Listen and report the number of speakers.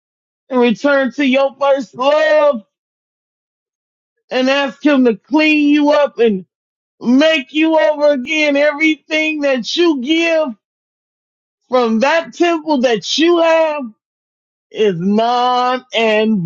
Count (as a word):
one